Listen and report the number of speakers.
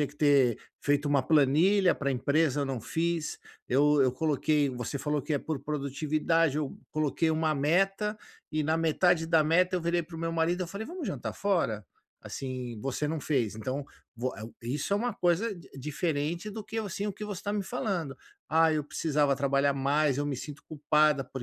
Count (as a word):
one